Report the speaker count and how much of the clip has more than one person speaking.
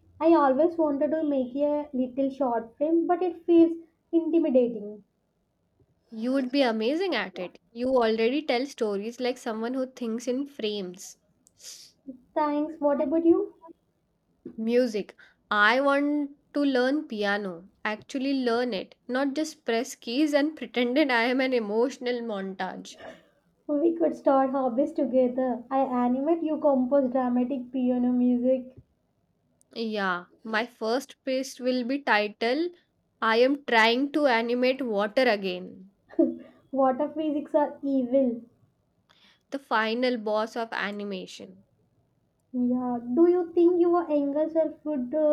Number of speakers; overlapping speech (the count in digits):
2, no overlap